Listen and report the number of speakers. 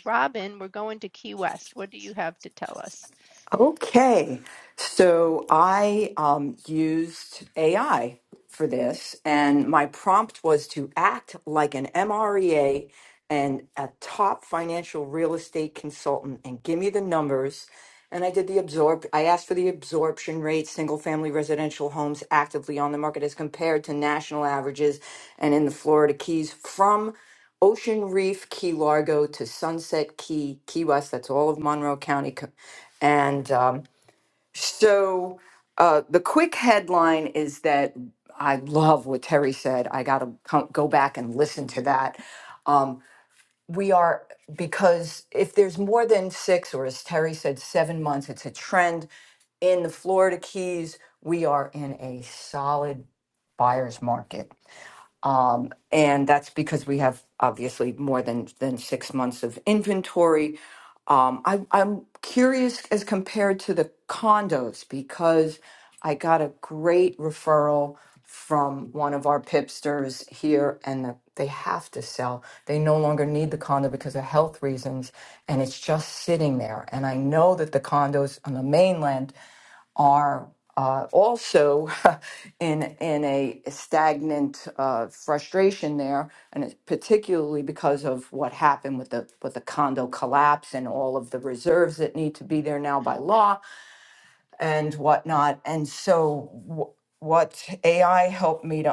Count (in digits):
2